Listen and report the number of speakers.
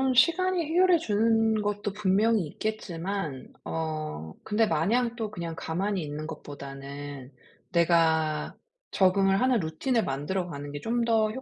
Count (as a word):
one